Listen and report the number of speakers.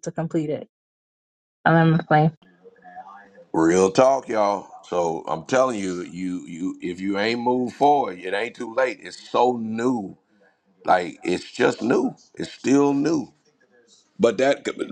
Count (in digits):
2